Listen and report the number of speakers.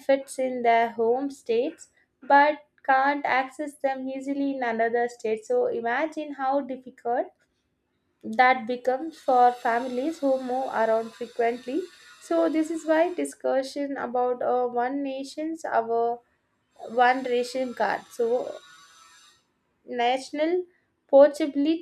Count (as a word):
one